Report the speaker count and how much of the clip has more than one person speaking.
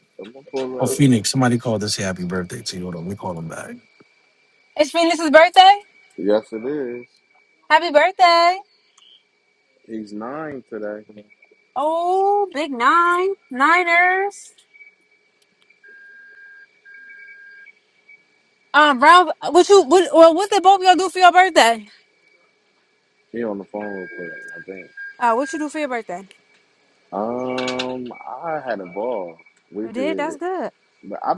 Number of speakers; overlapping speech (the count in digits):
3, about 2%